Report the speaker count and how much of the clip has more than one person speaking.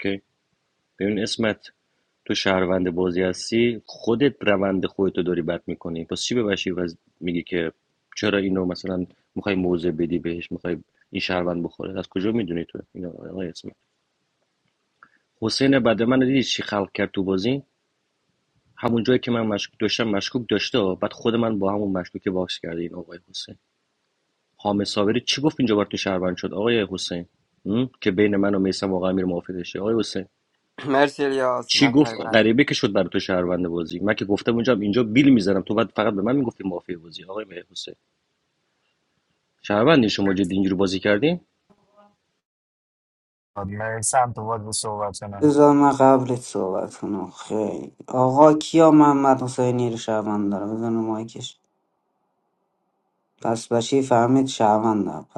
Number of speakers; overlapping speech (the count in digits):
4, about 1%